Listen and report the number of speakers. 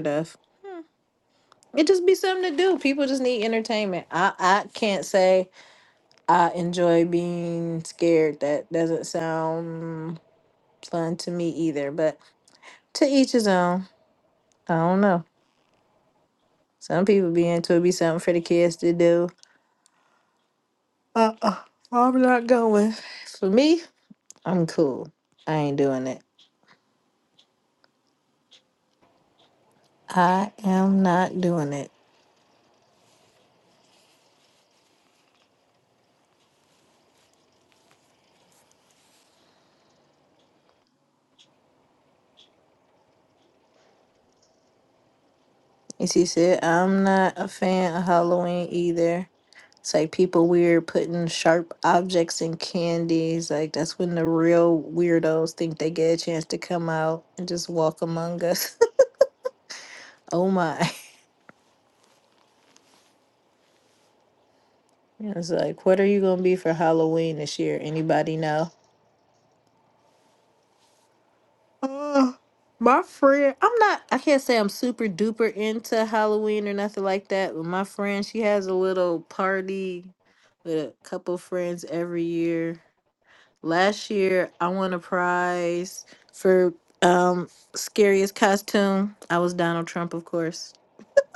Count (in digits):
1